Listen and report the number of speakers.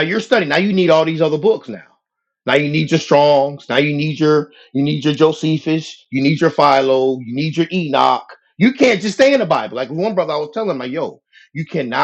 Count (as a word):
one